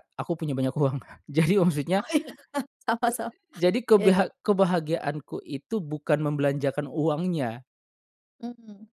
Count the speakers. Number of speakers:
2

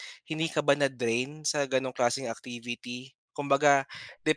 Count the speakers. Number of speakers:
1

